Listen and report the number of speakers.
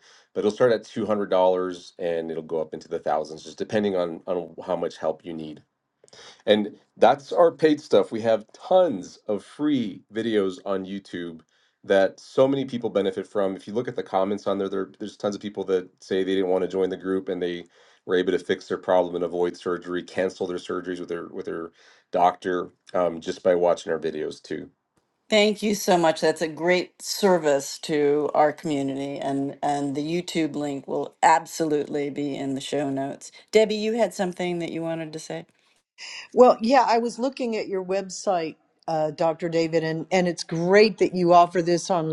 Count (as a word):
three